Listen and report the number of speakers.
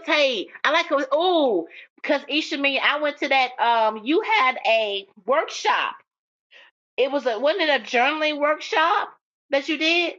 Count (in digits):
1